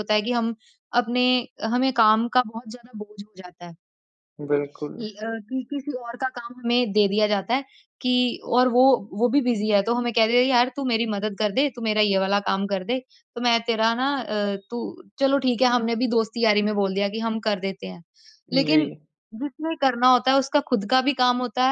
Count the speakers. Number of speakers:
2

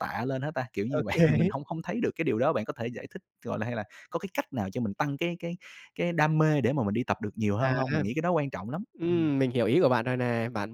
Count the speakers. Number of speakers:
2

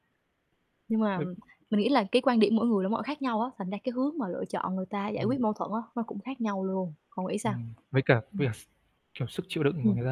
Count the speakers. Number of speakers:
2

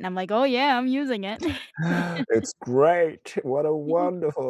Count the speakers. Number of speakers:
2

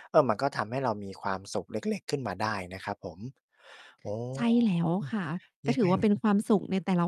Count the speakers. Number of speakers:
2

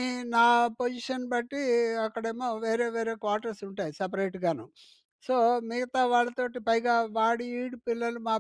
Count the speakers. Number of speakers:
1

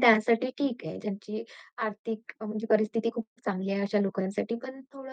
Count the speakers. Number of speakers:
1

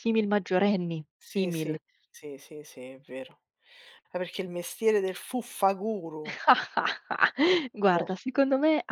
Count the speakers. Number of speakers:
2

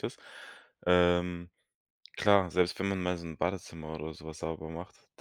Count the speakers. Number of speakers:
1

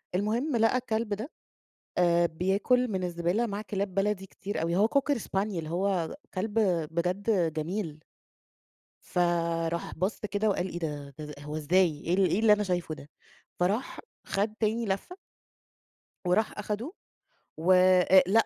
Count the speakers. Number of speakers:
1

